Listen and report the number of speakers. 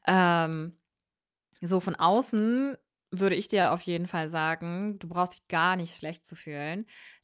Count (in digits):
1